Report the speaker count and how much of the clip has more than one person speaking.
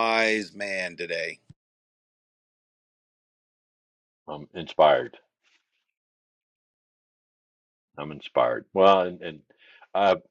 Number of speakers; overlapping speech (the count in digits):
2, no overlap